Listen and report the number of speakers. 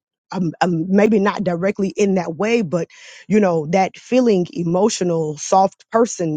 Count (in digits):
1